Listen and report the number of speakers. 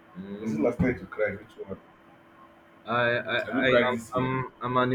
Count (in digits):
2